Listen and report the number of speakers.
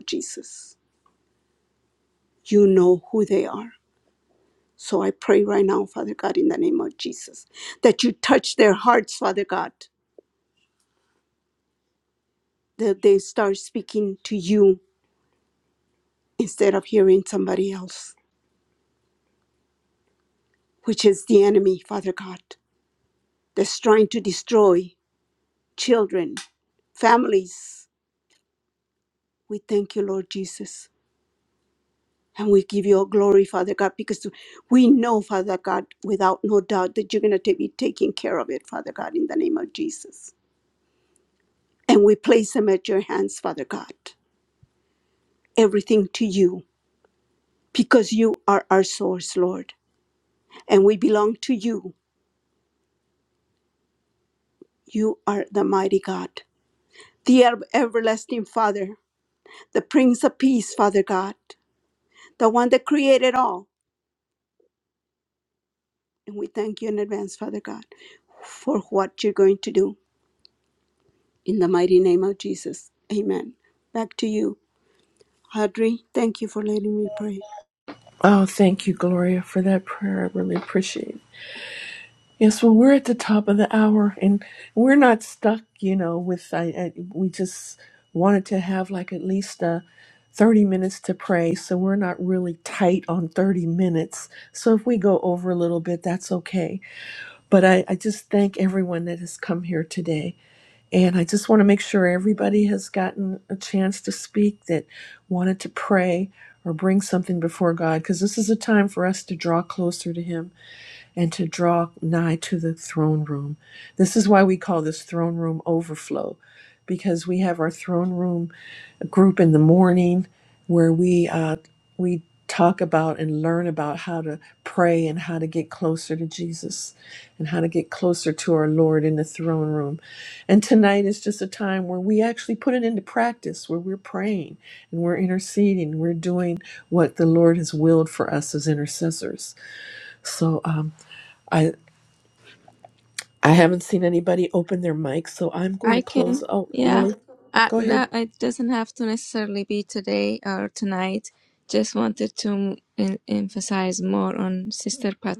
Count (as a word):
three